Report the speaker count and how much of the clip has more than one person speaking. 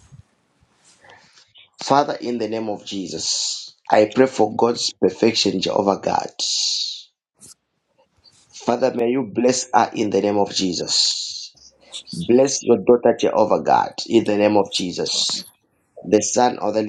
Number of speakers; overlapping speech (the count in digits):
1, no overlap